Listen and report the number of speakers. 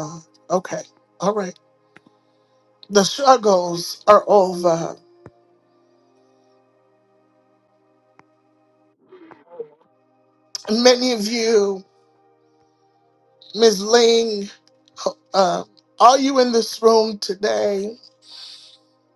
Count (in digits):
1